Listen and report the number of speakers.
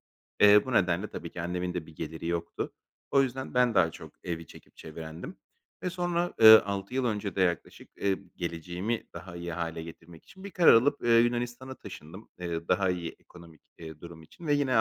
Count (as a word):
one